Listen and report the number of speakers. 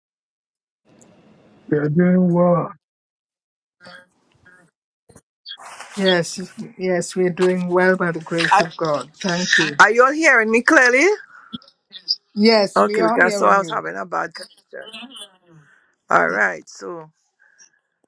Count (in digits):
3